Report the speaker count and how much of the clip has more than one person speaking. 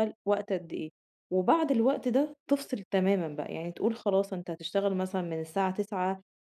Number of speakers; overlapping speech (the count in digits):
1, no overlap